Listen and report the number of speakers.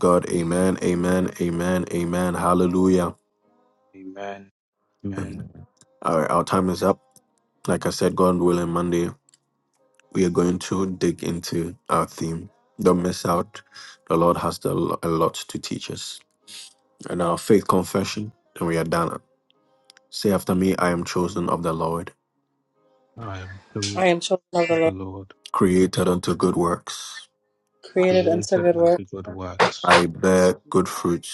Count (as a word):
three